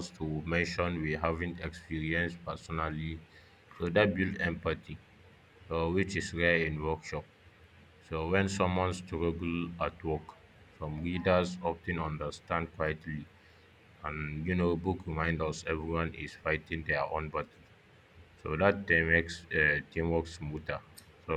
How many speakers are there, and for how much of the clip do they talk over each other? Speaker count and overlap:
one, no overlap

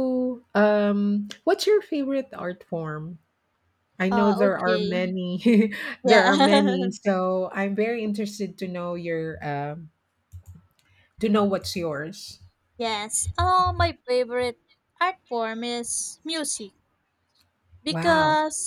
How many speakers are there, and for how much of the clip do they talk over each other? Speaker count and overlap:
two, about 11%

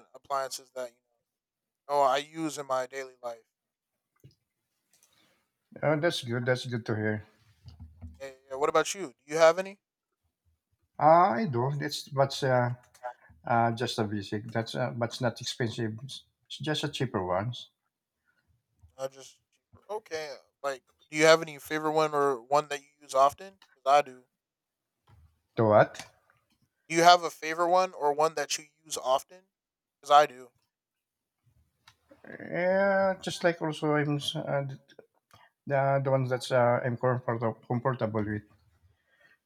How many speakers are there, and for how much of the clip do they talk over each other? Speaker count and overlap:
two, no overlap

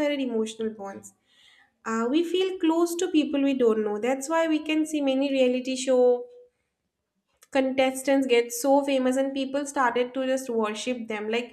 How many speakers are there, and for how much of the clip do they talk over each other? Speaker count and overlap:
one, no overlap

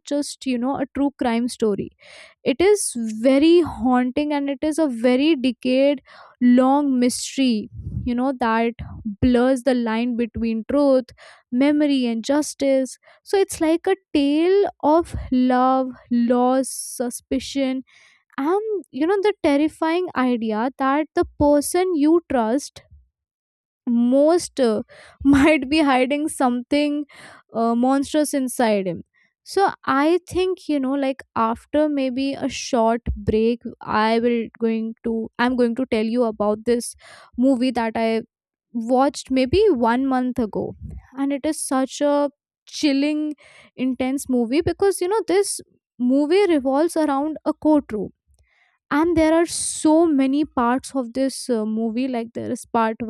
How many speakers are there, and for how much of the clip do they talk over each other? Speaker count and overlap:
one, no overlap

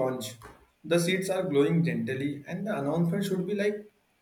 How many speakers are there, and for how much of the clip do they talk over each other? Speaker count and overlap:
one, no overlap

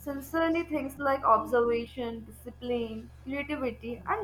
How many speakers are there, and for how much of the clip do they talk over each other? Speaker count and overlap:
one, no overlap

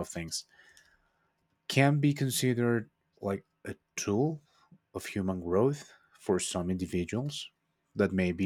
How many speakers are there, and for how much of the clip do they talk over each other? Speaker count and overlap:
one, no overlap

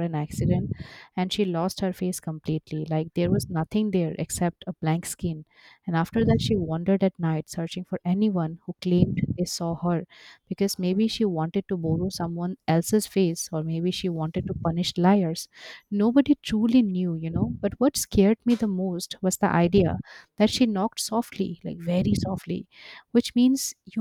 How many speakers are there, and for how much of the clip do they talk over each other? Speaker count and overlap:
one, no overlap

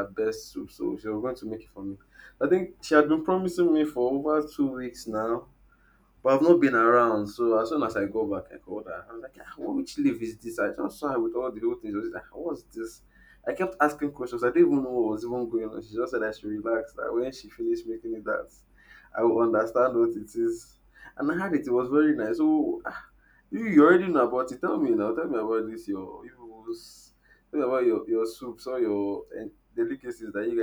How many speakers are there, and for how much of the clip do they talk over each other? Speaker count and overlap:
one, no overlap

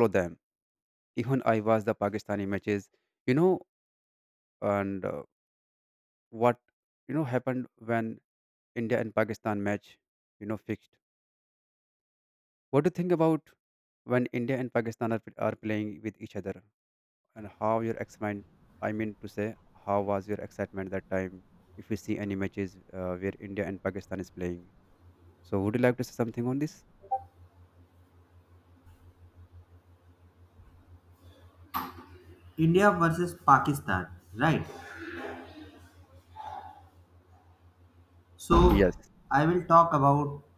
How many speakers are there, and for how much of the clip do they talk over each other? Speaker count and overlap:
two, under 1%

